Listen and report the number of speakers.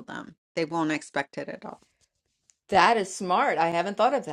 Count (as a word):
two